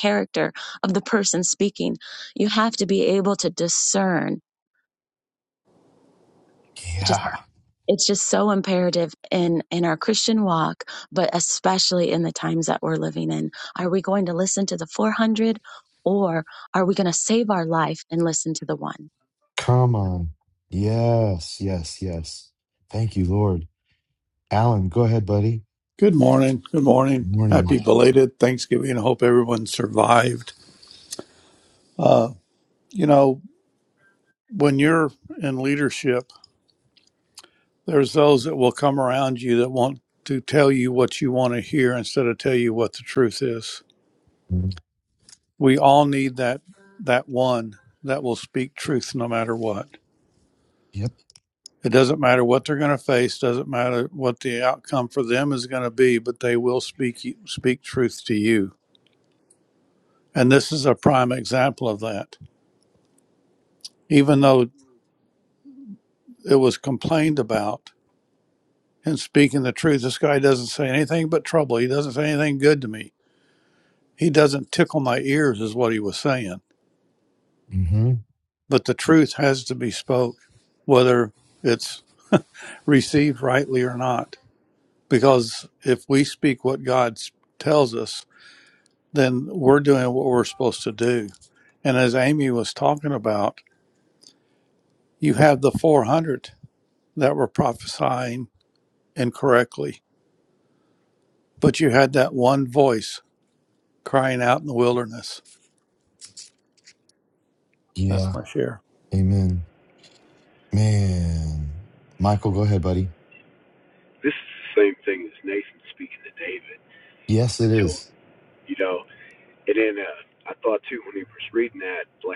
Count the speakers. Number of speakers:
4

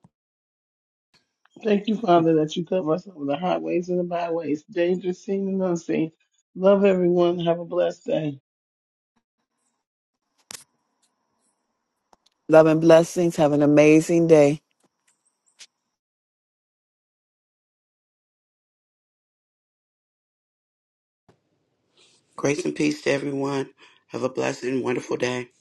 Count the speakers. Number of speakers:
3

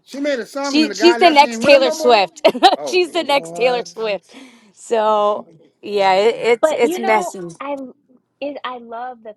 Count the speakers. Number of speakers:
3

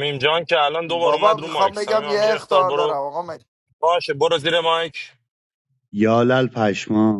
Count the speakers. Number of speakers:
3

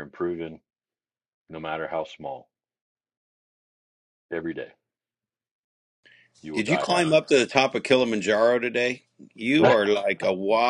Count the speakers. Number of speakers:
2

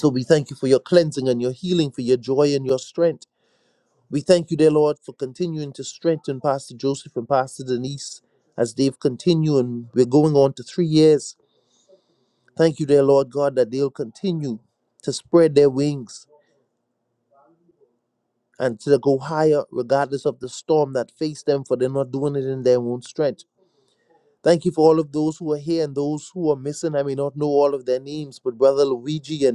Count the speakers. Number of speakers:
1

